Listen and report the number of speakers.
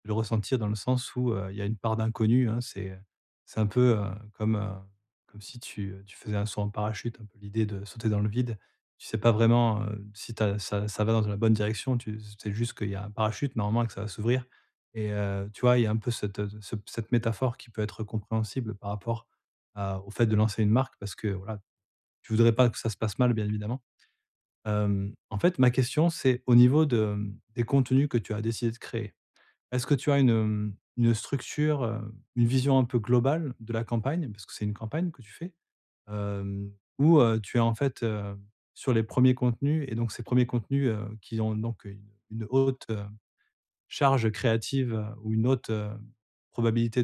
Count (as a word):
one